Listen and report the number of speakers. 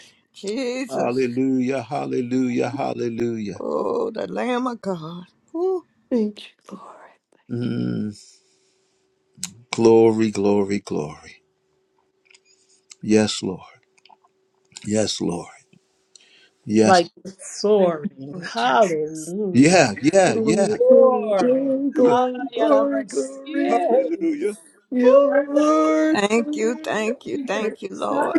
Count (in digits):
4